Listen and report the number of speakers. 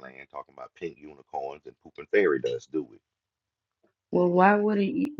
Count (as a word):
two